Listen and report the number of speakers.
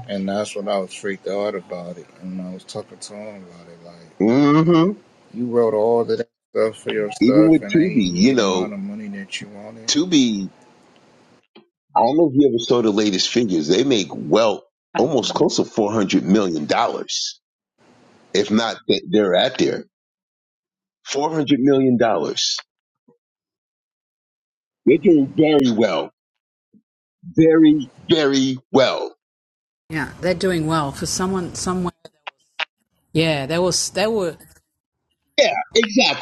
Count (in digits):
3